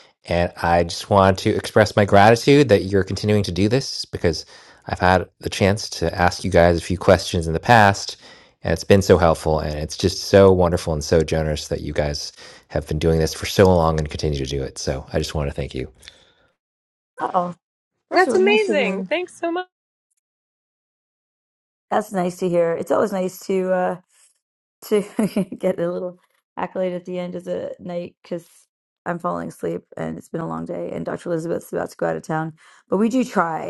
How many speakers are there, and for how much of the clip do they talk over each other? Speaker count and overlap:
three, about 3%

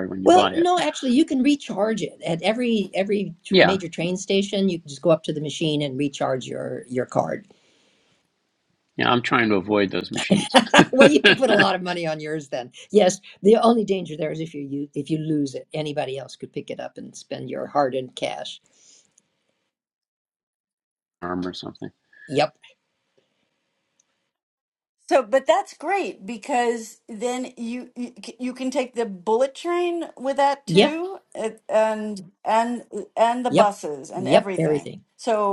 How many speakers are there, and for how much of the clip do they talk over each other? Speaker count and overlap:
three, about 5%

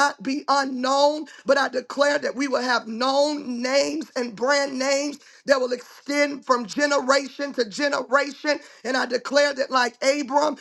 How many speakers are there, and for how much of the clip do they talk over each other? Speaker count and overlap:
one, no overlap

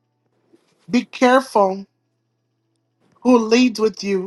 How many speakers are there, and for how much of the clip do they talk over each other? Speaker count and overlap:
one, no overlap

